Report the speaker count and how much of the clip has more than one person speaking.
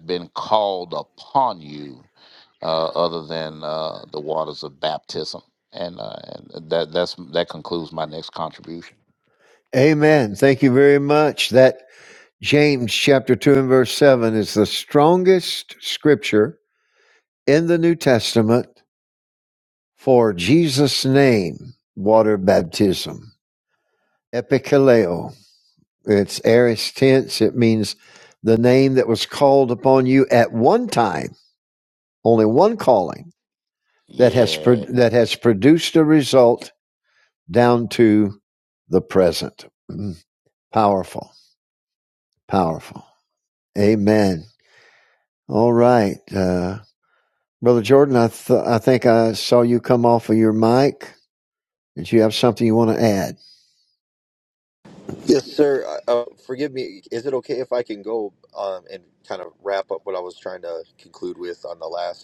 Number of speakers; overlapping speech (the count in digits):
3, about 1%